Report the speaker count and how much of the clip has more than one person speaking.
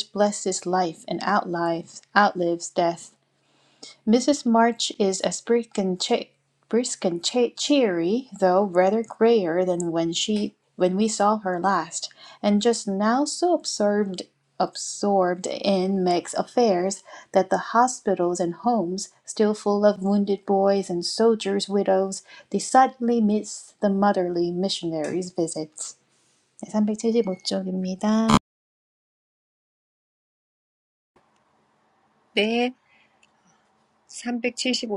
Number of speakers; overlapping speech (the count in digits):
2, no overlap